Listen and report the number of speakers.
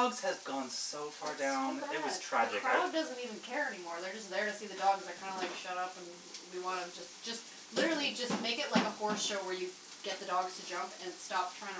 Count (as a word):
two